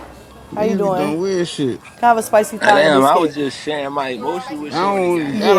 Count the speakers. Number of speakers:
three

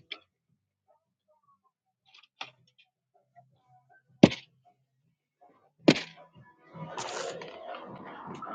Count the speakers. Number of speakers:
zero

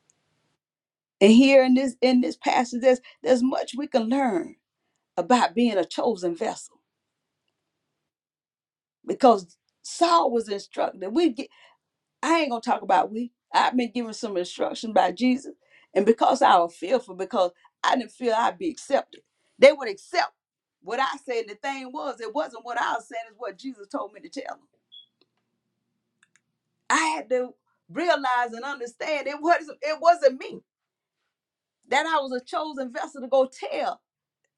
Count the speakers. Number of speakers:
one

